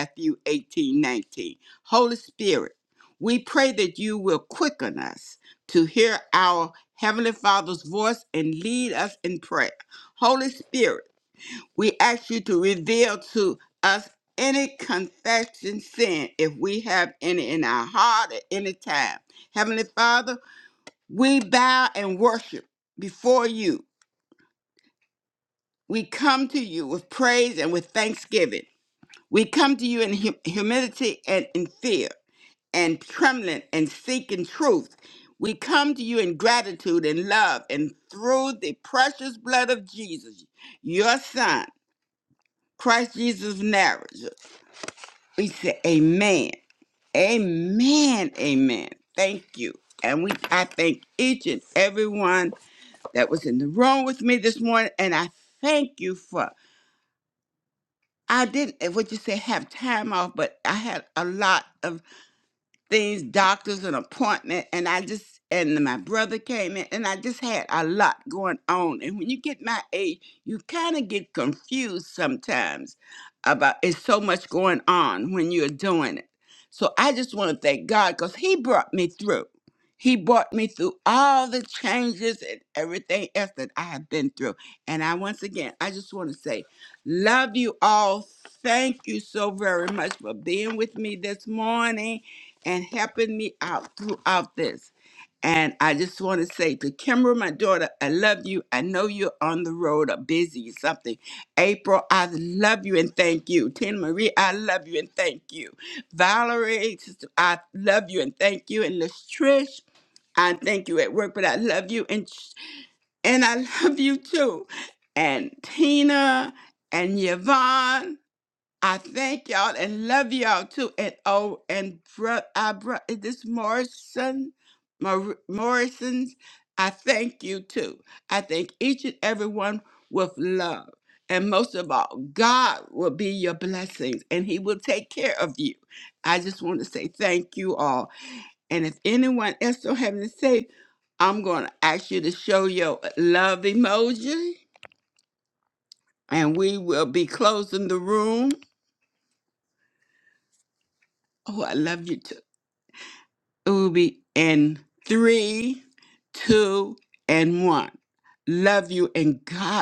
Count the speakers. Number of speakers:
1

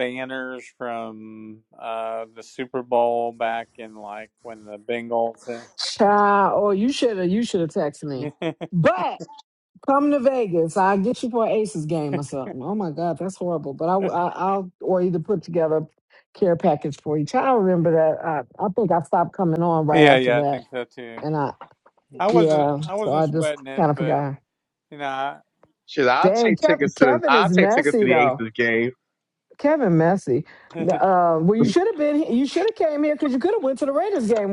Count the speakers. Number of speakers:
3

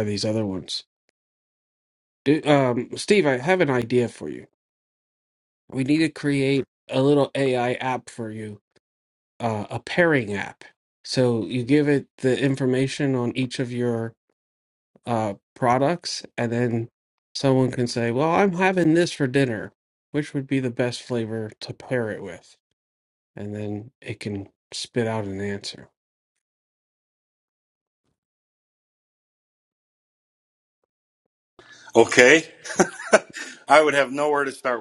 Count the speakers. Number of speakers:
2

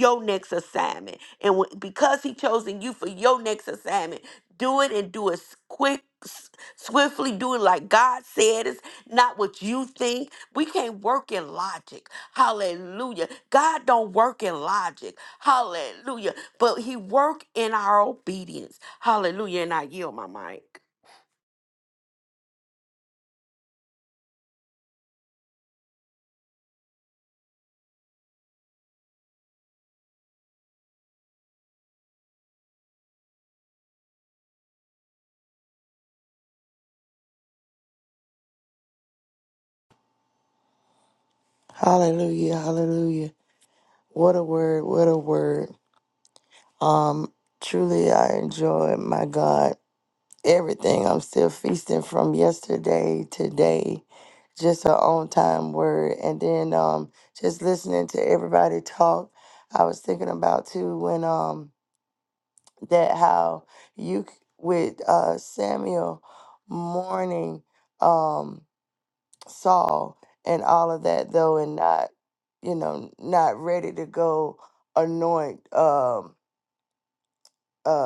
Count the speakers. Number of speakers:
2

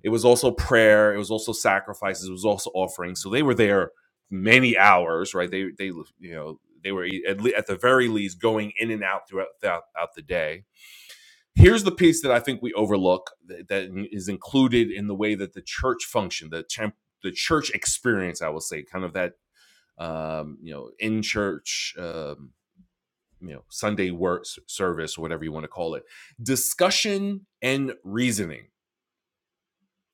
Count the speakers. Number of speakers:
1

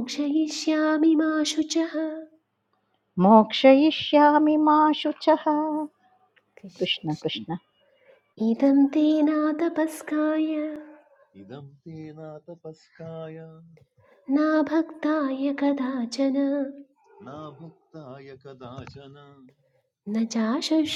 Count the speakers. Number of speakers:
3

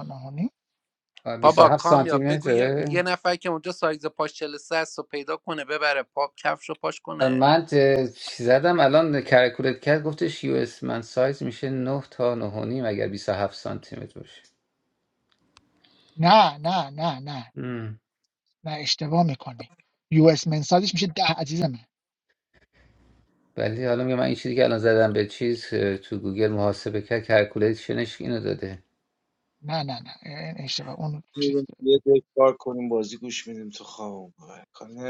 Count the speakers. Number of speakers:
4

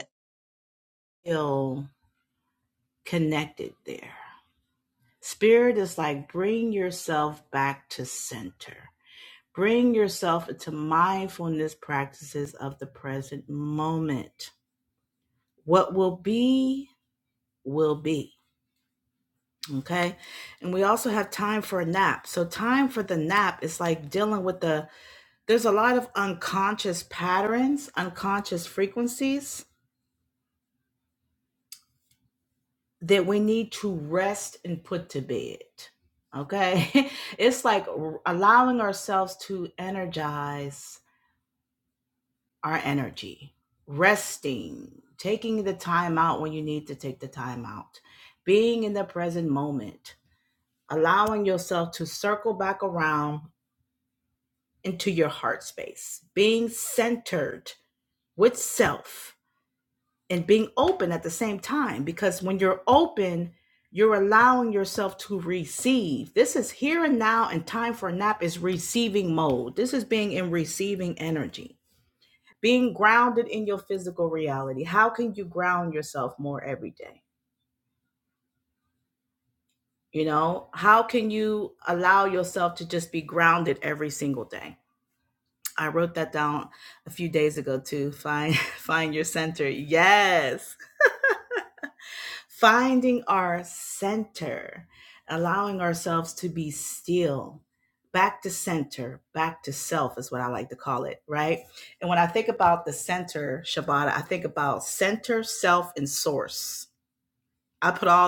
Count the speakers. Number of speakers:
1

